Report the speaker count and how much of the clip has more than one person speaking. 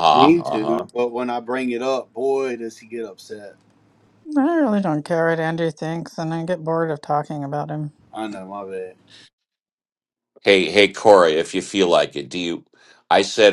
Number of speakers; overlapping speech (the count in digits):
3, about 6%